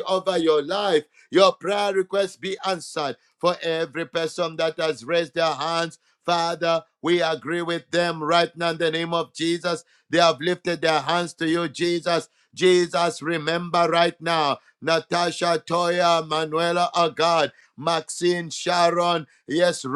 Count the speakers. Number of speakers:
1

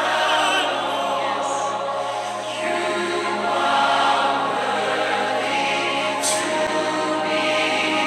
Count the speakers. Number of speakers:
0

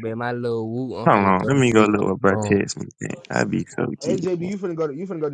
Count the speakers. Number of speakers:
3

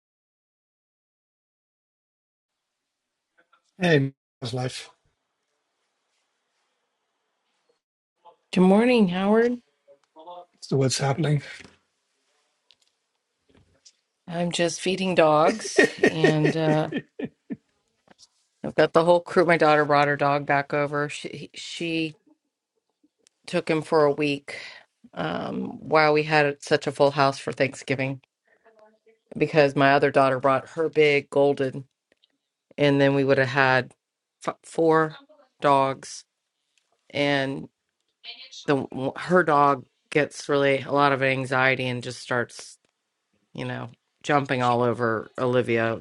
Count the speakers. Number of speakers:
2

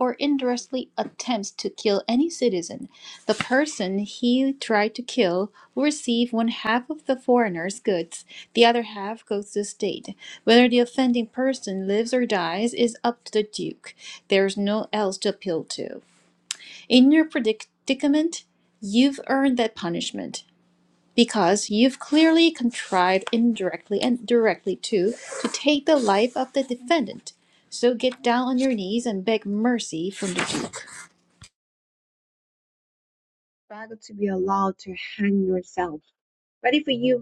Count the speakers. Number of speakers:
2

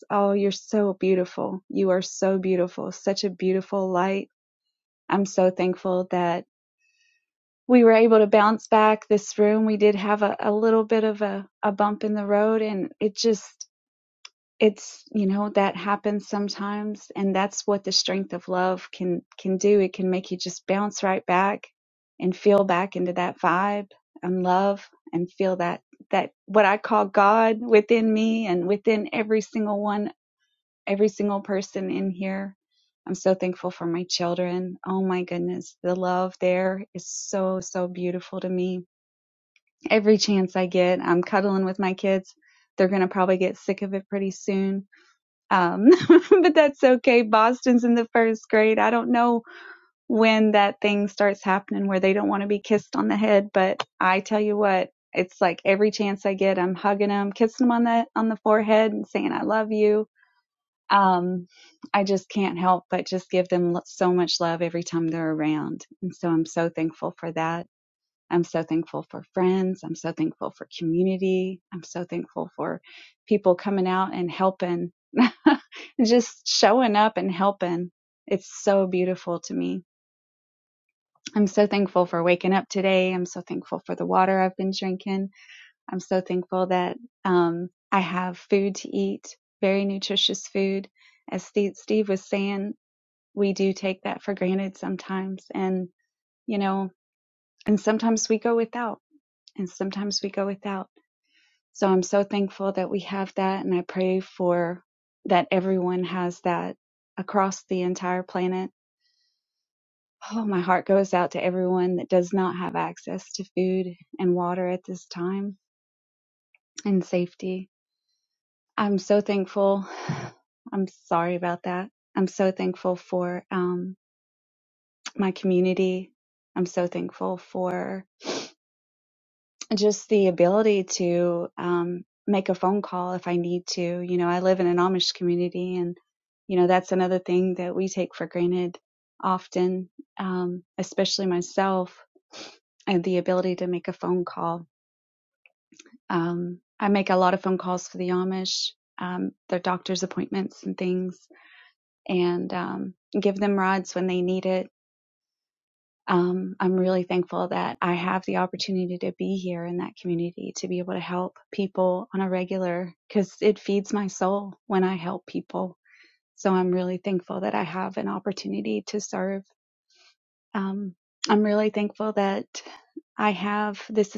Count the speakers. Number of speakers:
1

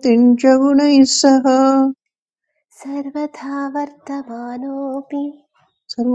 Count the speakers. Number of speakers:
2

